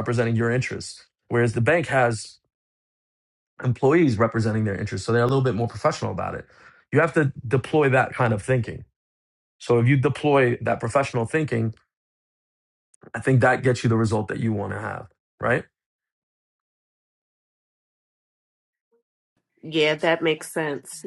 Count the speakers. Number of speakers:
2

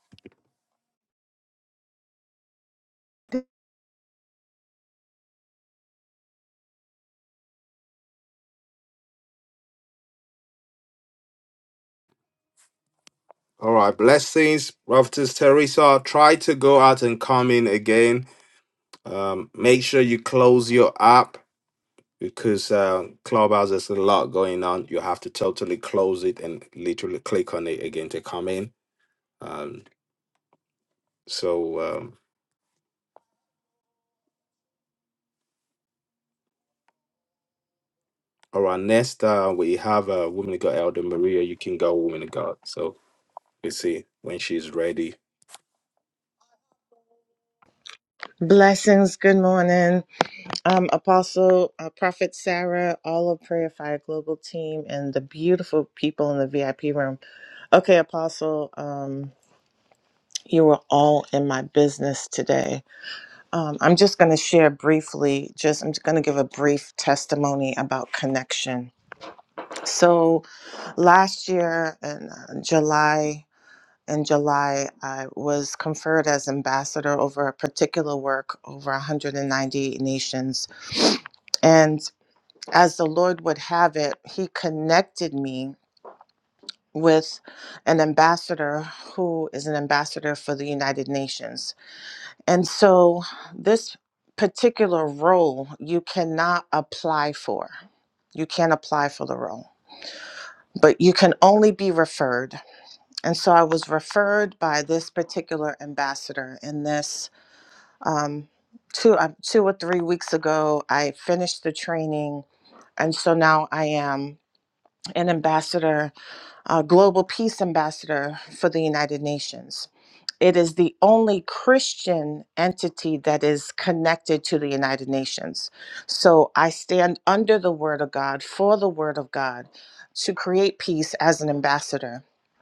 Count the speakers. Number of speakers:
2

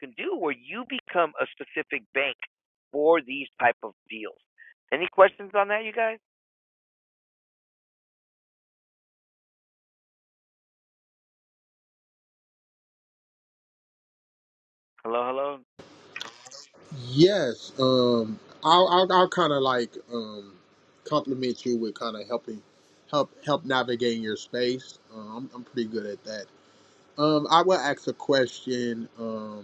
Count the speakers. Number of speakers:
2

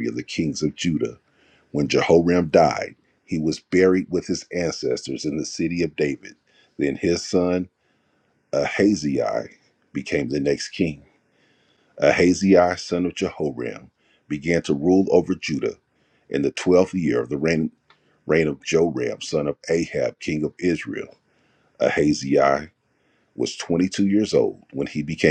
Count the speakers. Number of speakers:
1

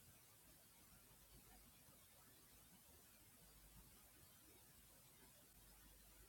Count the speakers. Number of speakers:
0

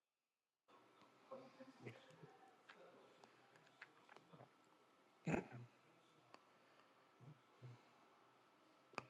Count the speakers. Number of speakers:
0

